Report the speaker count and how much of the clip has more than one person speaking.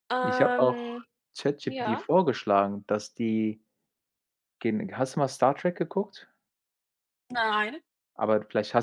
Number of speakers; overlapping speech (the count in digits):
2, about 13%